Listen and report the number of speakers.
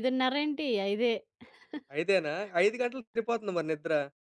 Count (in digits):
2